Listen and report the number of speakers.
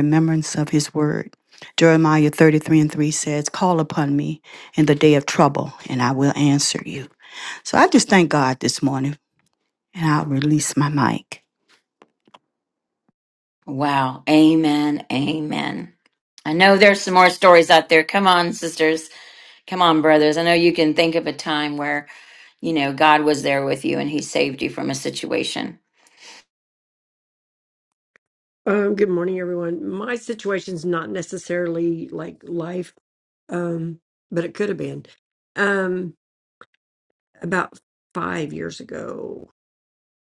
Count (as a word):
three